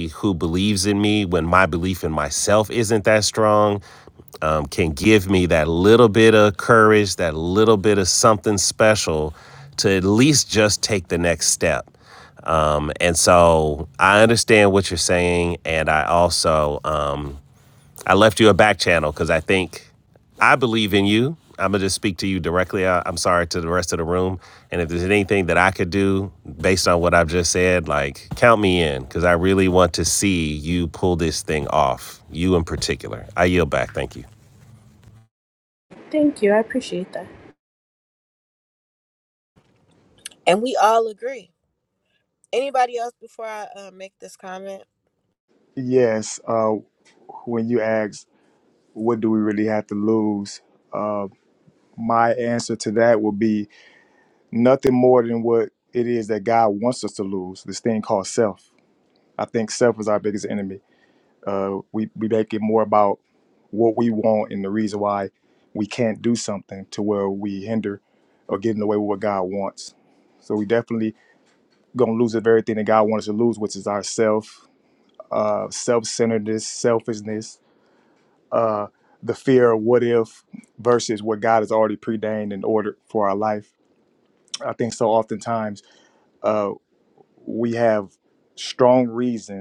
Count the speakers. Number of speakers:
four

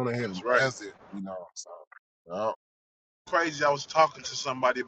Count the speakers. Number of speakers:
two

